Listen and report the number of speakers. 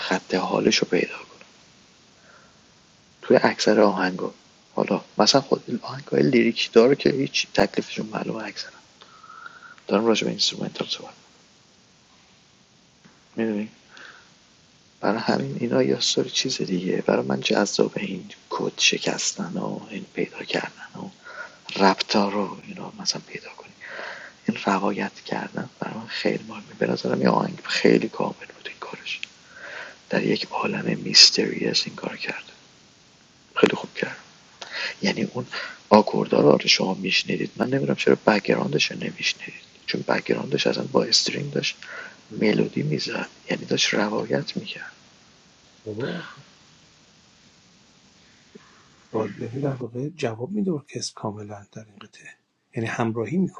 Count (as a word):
two